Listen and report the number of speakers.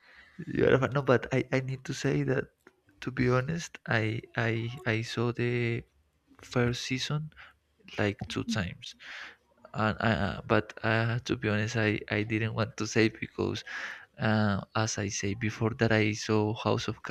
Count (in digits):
1